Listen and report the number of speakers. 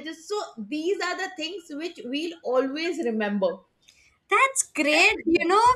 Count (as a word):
two